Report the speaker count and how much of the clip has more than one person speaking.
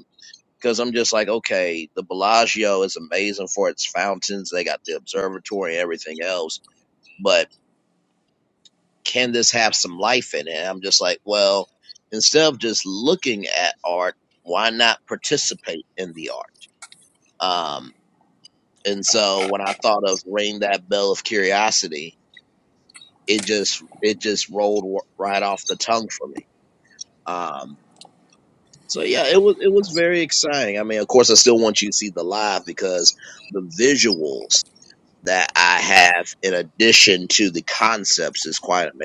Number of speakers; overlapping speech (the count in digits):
1, no overlap